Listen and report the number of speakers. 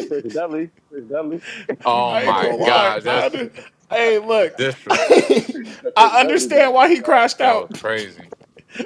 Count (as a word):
three